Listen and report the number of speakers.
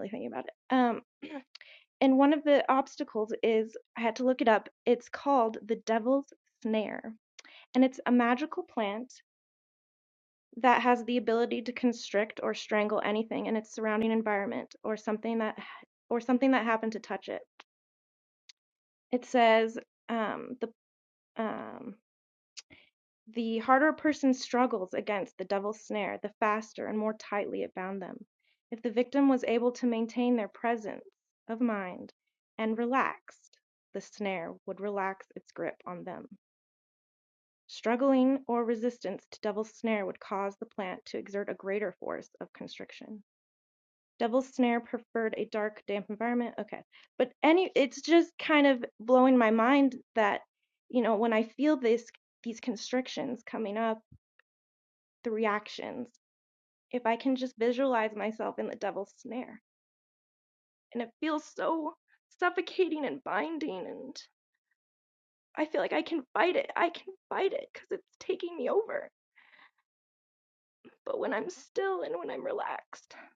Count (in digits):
1